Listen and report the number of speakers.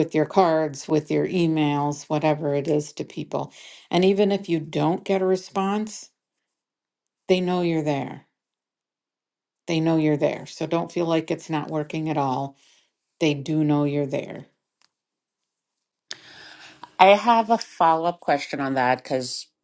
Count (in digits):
2